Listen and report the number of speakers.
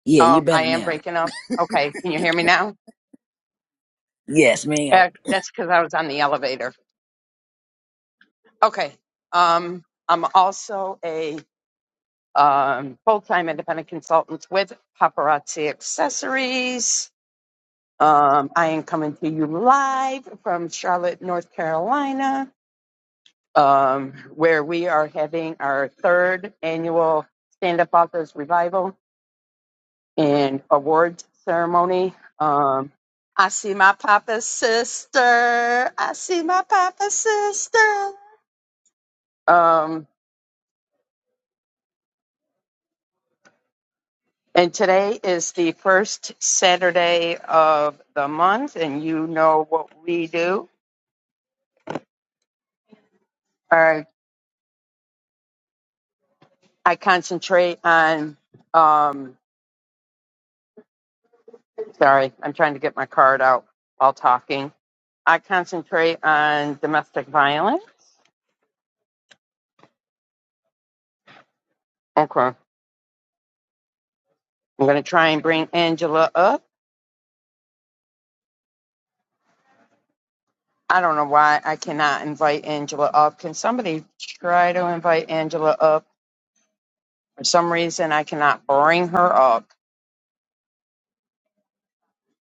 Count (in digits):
2